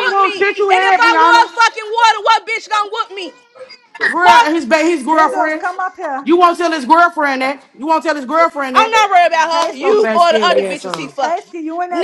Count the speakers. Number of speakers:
3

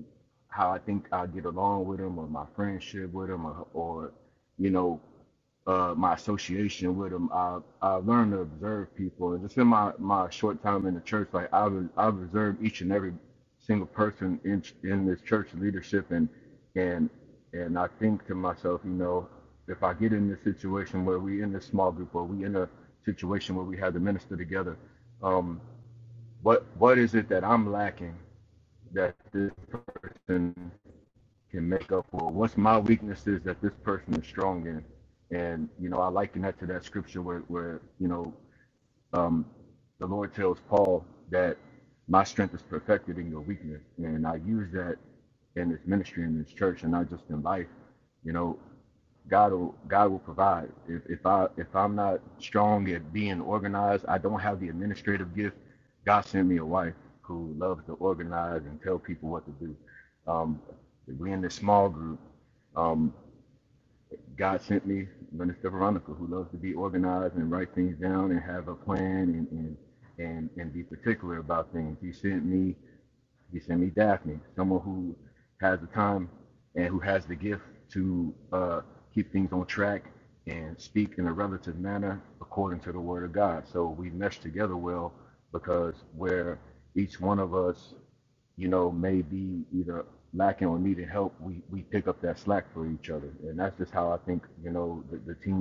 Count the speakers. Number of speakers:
1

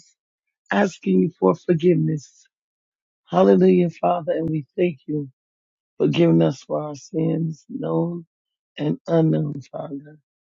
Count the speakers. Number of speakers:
1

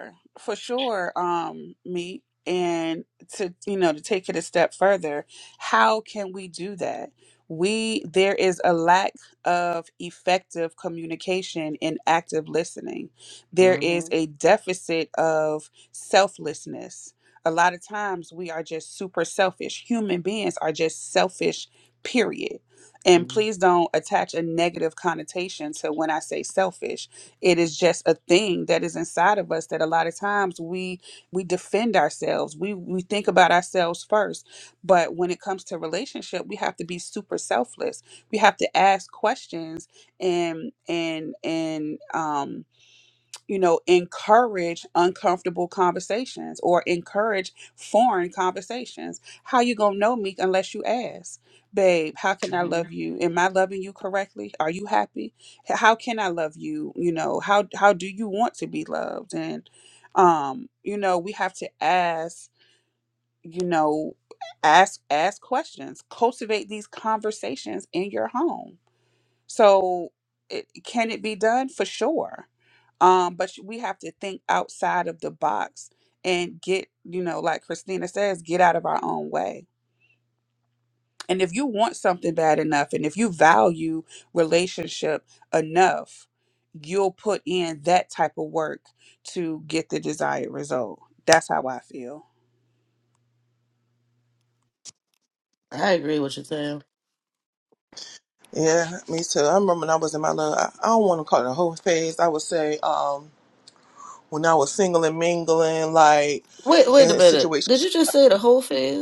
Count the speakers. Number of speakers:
3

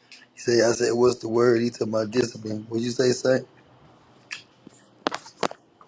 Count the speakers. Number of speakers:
1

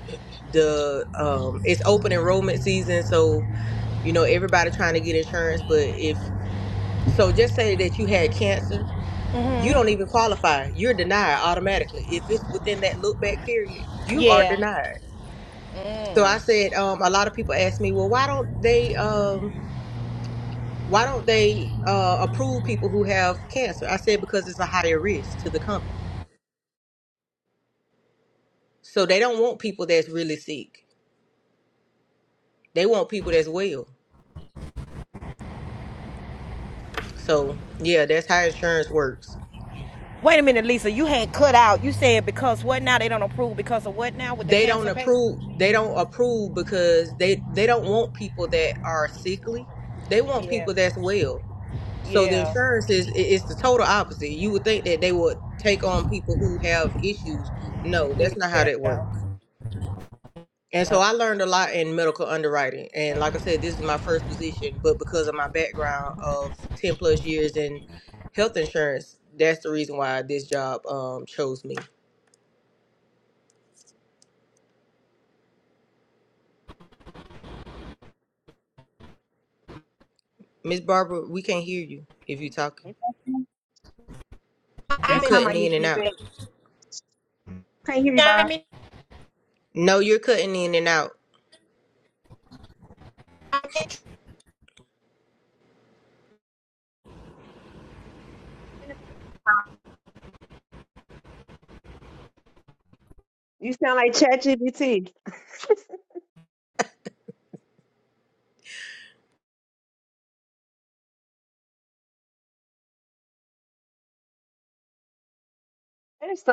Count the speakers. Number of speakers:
3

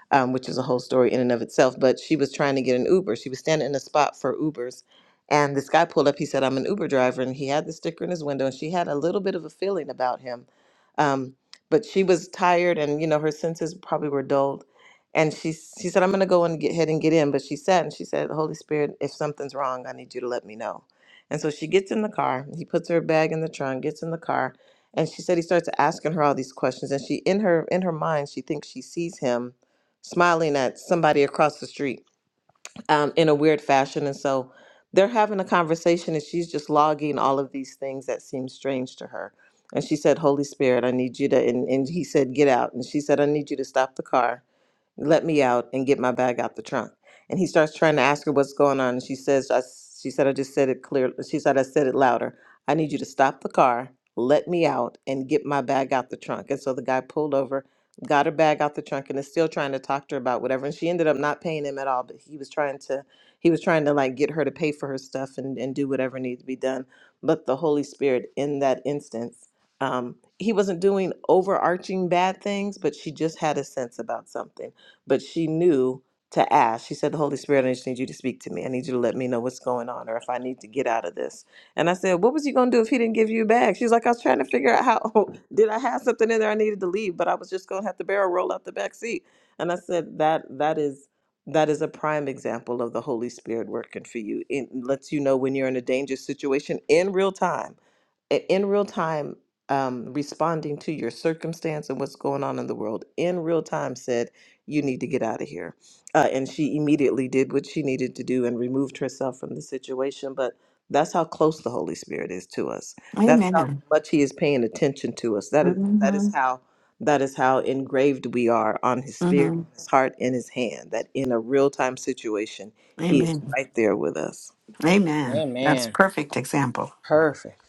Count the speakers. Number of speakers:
3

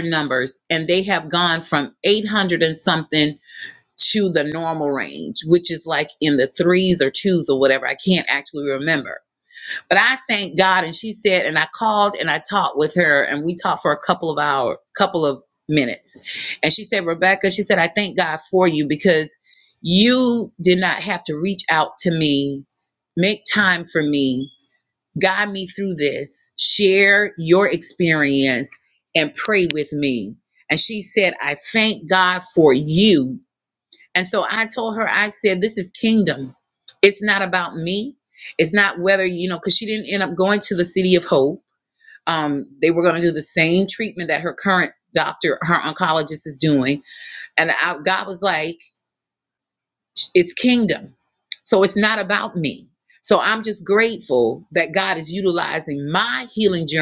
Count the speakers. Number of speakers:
1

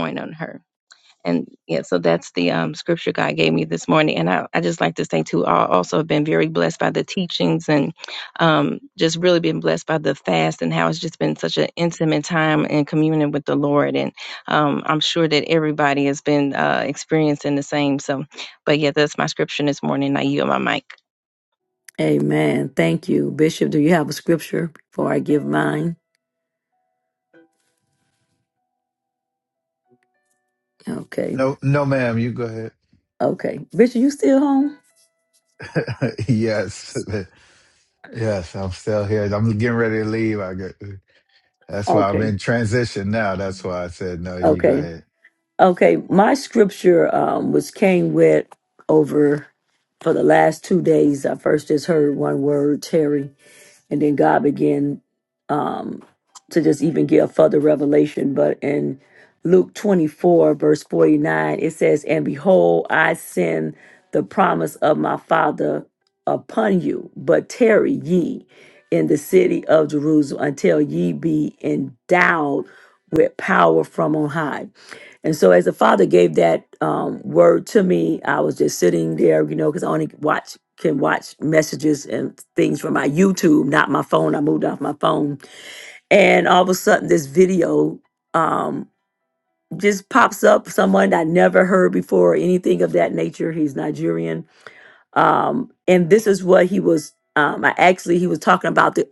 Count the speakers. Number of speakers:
3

